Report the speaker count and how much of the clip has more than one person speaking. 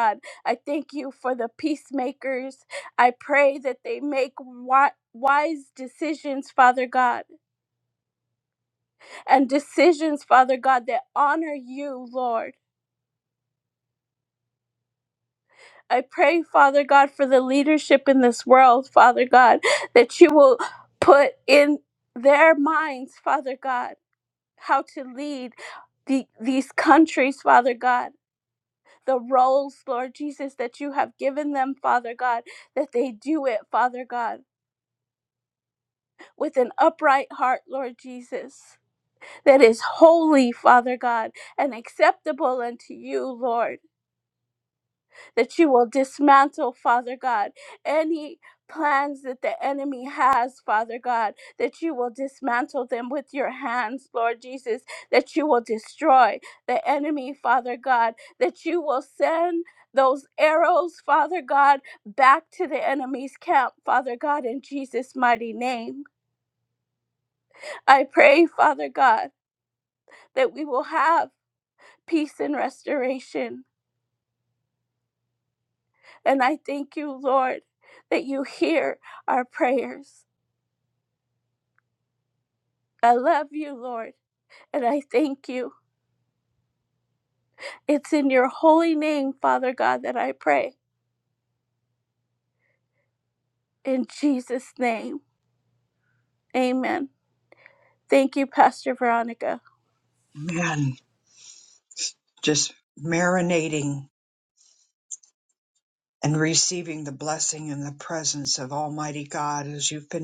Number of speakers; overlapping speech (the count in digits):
2, no overlap